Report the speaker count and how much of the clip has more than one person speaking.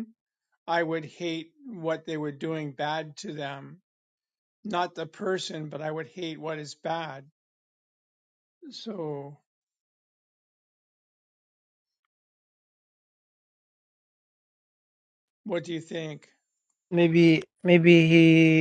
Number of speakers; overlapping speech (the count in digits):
2, no overlap